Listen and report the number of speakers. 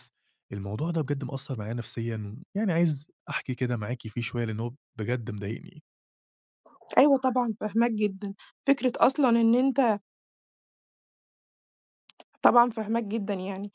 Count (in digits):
2